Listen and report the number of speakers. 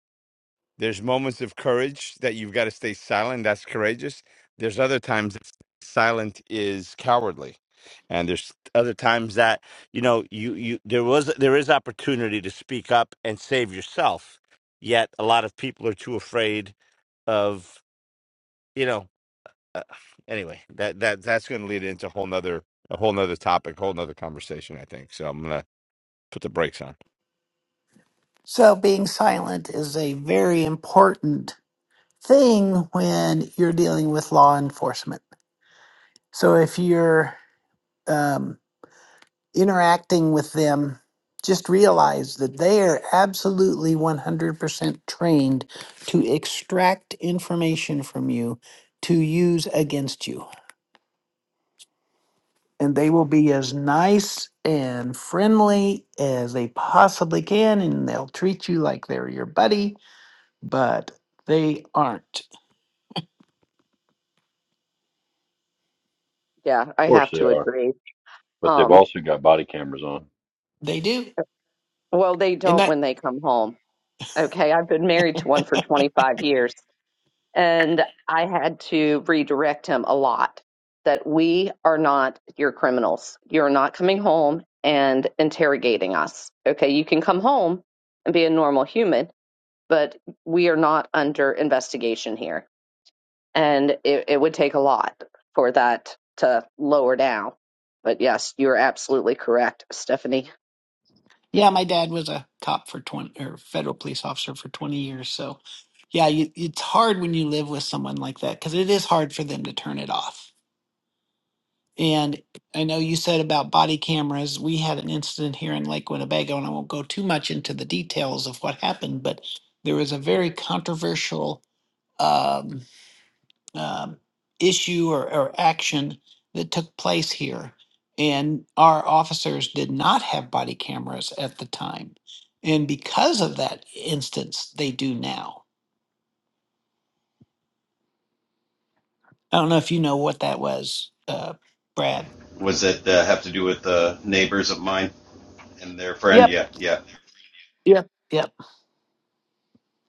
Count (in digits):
5